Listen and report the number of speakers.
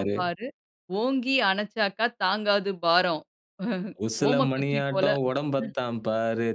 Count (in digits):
2